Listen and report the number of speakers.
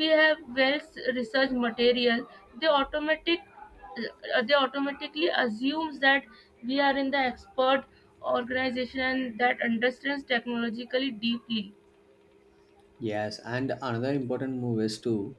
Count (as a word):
two